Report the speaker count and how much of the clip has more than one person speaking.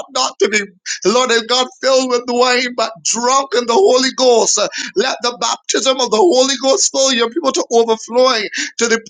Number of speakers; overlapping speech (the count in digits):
1, no overlap